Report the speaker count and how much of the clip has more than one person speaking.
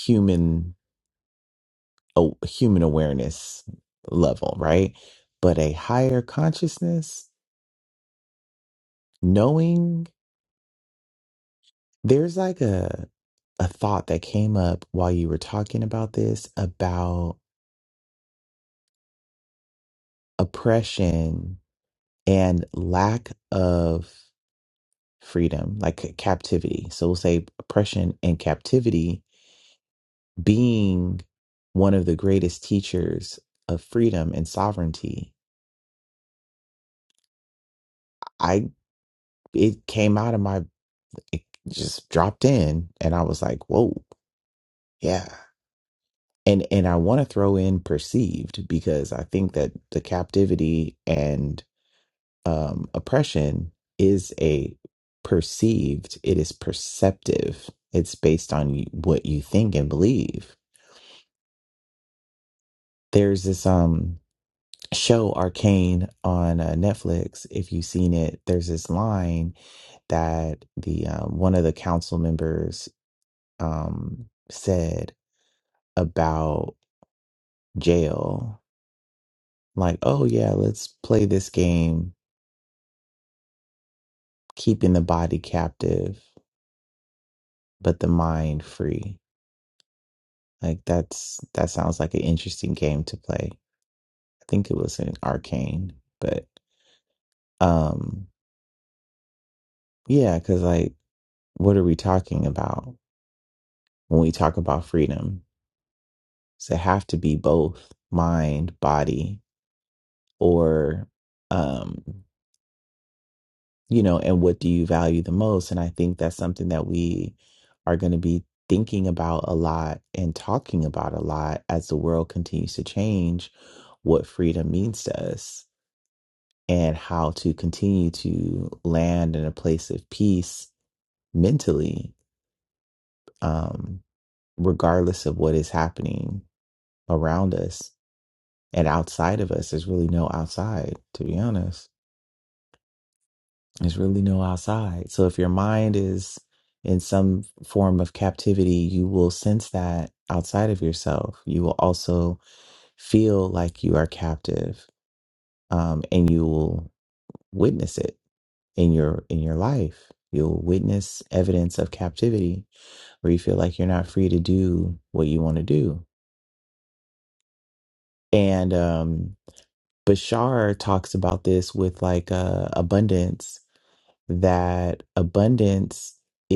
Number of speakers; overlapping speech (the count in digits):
1, no overlap